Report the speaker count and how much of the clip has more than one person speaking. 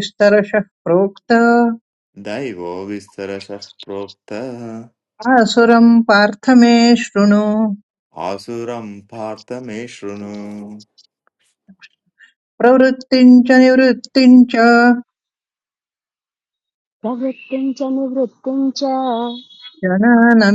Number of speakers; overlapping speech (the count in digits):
3, no overlap